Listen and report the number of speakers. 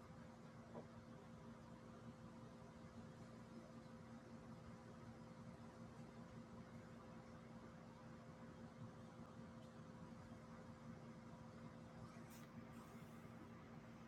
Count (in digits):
0